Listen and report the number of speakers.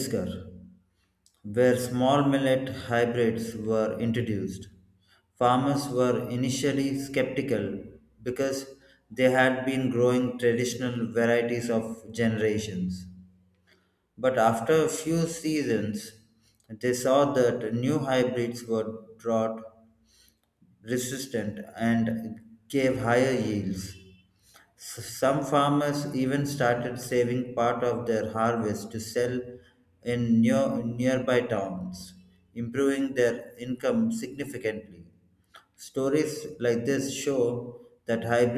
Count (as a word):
one